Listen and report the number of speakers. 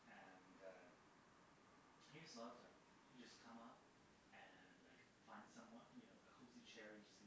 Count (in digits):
1